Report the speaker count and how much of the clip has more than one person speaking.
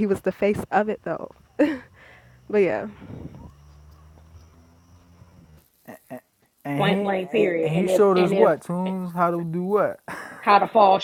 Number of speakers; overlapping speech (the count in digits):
3, about 16%